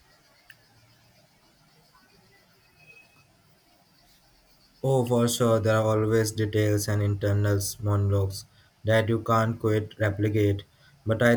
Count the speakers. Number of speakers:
1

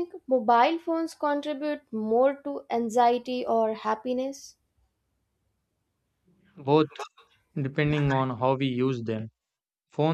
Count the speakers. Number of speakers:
2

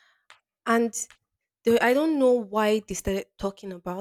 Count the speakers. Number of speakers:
1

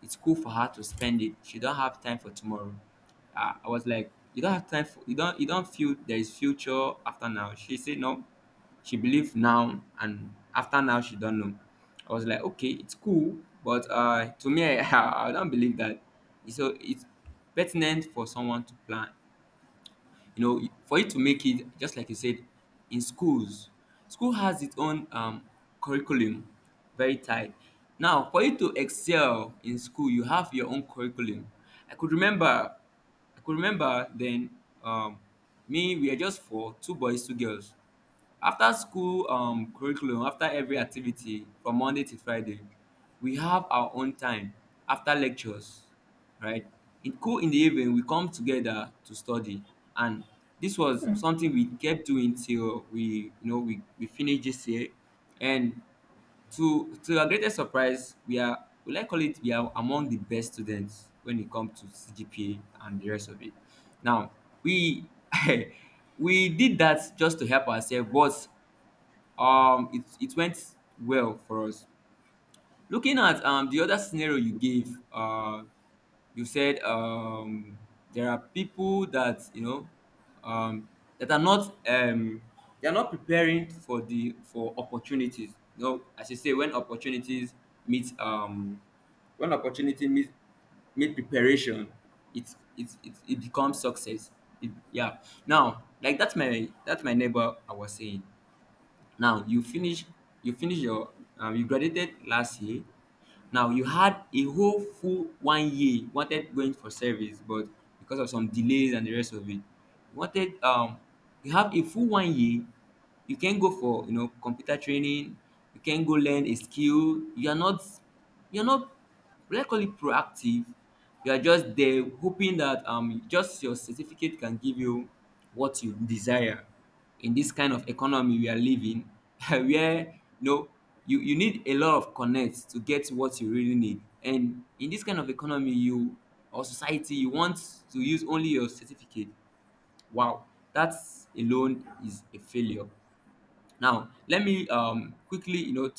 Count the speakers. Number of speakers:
1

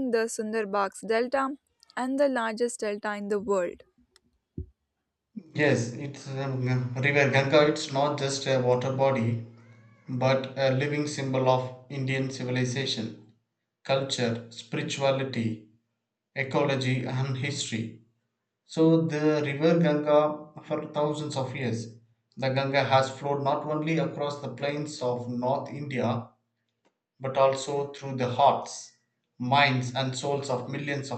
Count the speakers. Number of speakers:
2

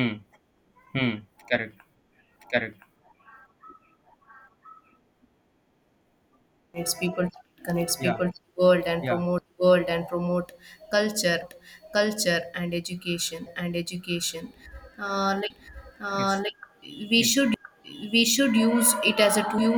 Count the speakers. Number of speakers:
2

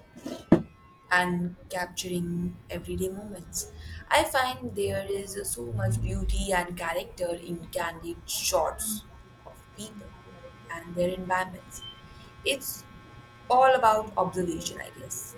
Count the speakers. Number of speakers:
1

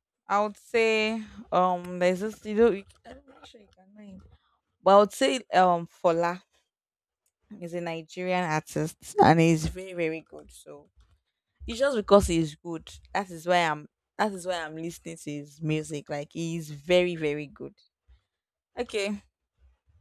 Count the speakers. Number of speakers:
1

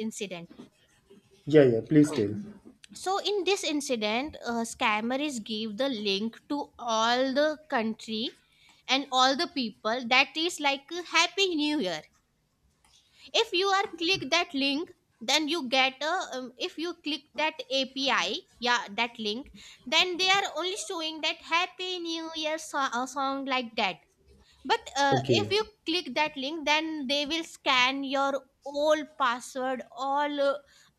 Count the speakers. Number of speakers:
2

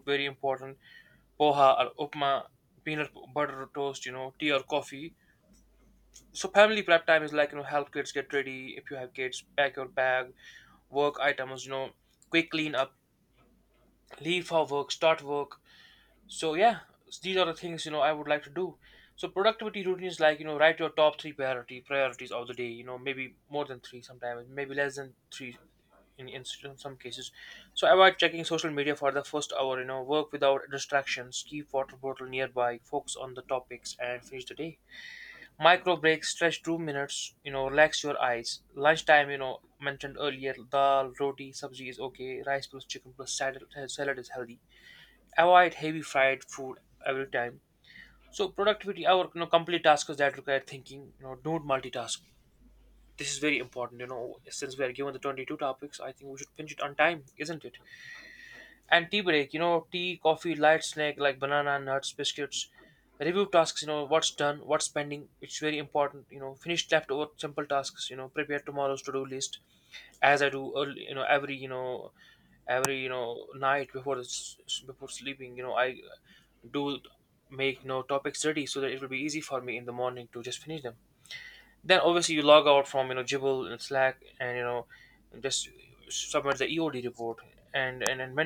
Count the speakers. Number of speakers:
1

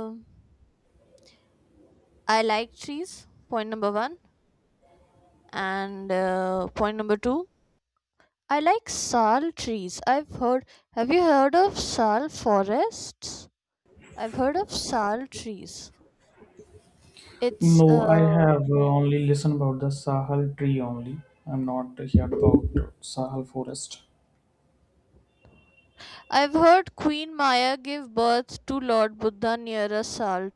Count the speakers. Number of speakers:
2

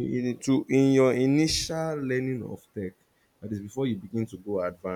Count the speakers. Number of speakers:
1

